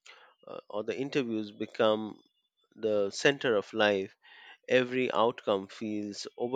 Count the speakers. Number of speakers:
1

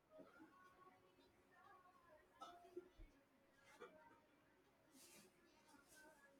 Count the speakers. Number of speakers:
0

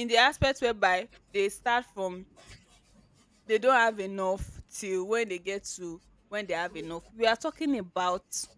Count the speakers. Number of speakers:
1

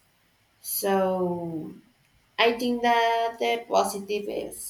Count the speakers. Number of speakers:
1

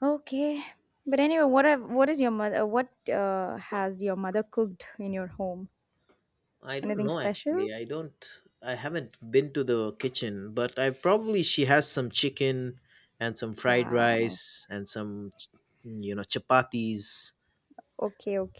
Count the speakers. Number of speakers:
2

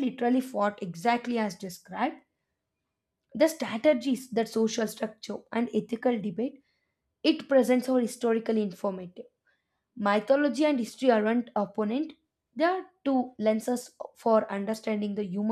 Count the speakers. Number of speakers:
1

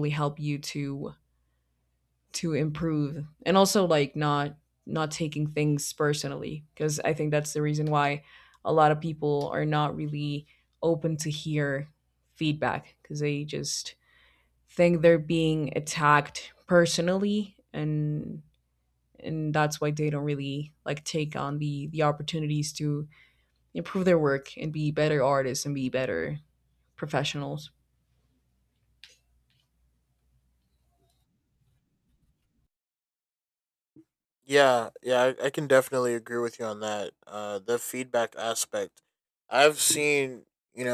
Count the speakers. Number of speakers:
2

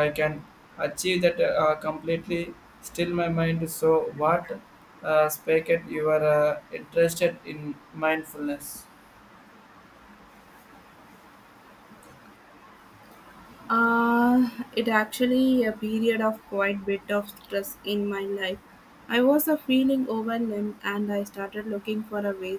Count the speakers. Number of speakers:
2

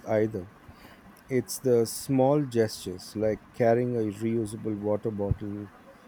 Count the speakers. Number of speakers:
1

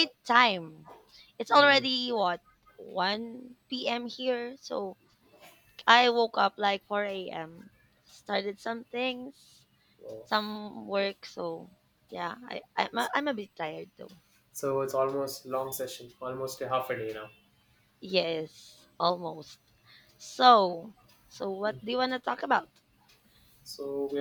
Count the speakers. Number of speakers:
2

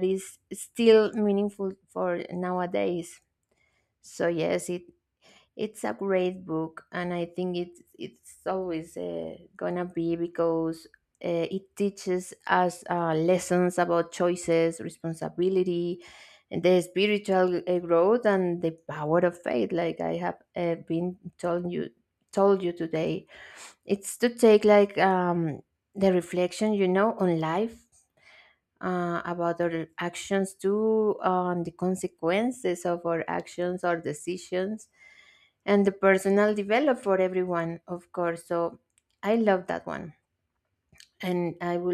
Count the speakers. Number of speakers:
1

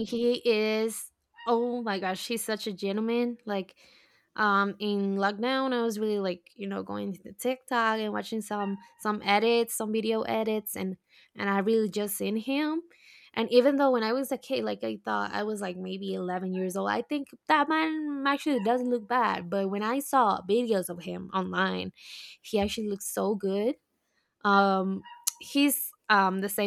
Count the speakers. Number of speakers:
1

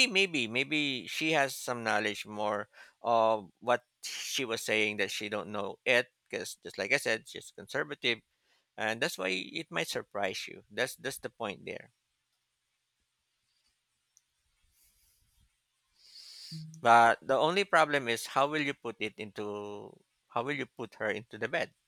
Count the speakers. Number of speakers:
1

